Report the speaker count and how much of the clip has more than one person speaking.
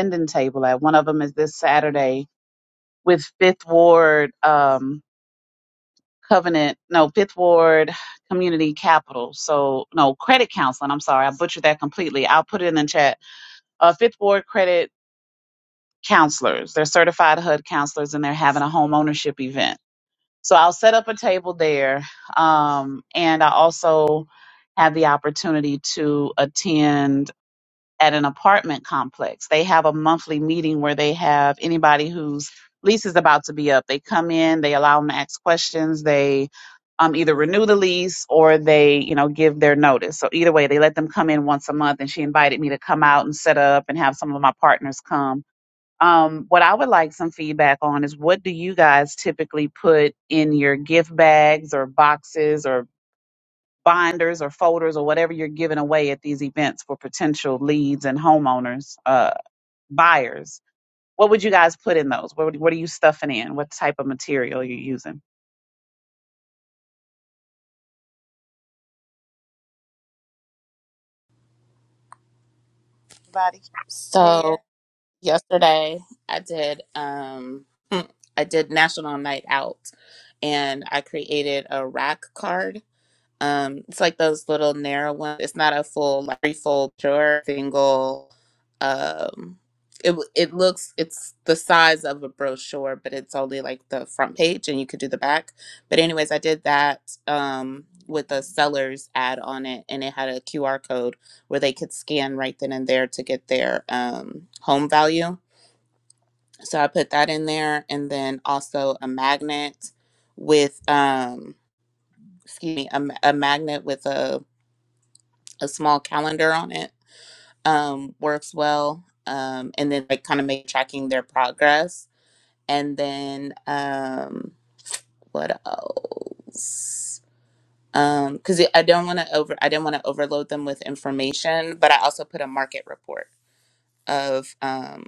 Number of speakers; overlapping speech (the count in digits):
2, under 1%